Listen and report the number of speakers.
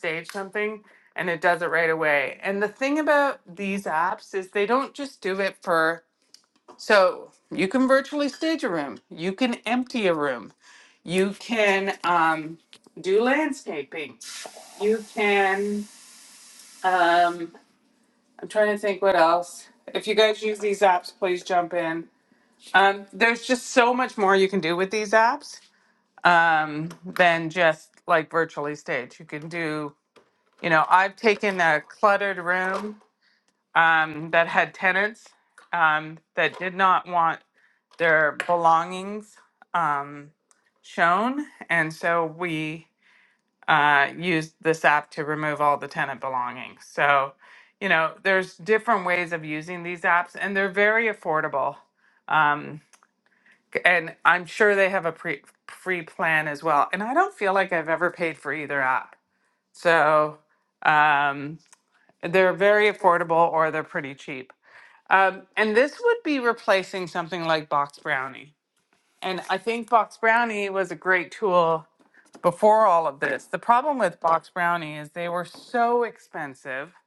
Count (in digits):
1